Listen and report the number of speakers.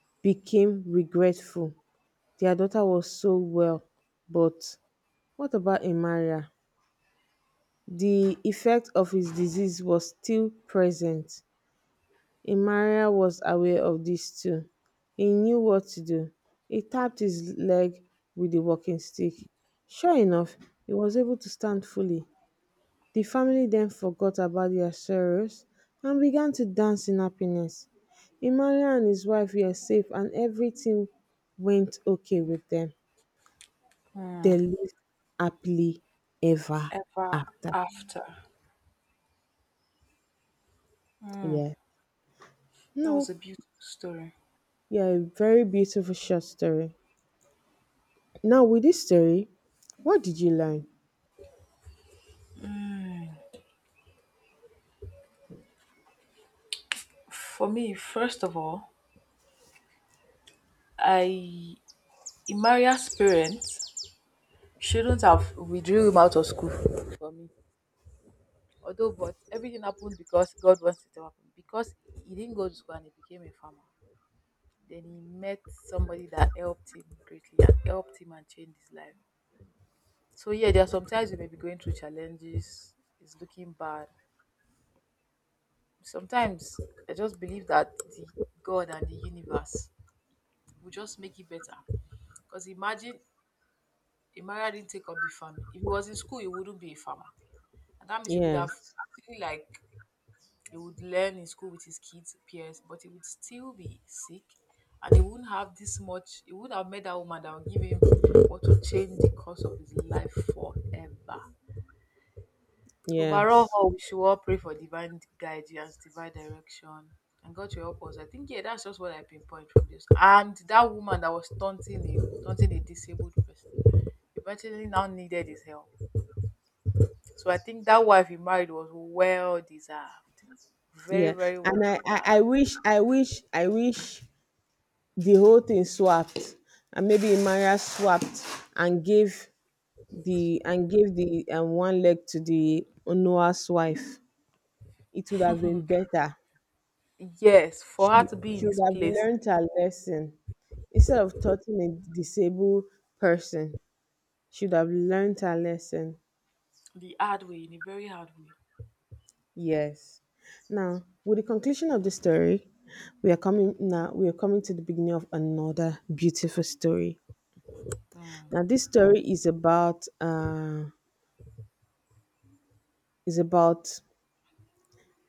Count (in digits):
2